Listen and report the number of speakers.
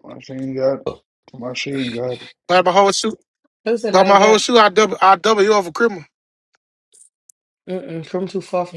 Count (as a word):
three